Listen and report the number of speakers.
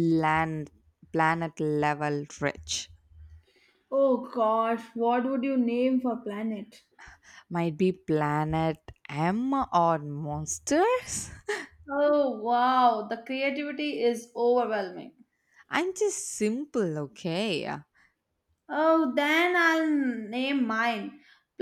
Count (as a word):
two